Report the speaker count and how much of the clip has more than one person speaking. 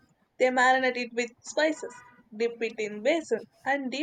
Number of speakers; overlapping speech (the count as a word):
one, no overlap